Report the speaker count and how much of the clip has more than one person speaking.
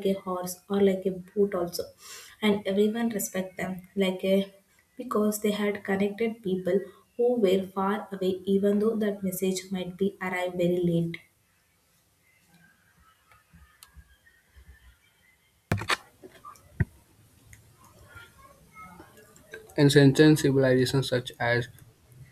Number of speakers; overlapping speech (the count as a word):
two, no overlap